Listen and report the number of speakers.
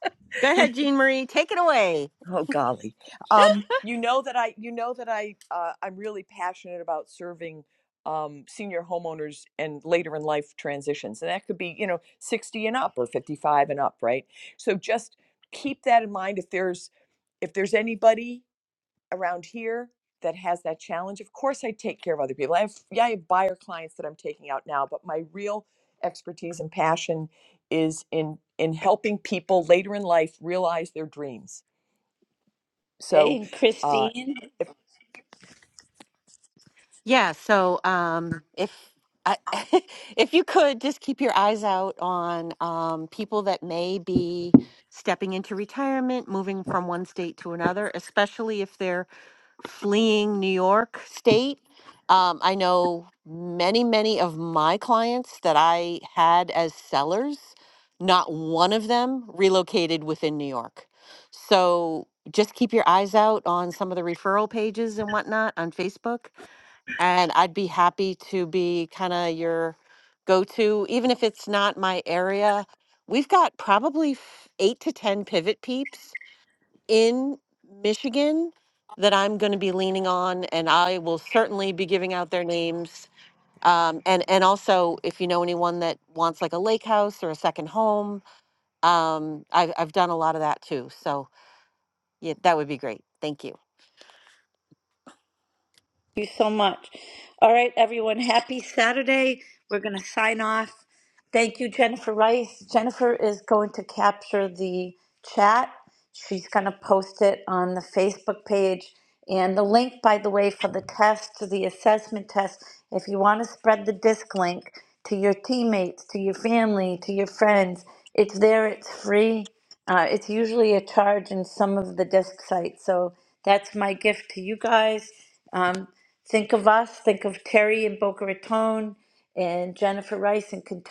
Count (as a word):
three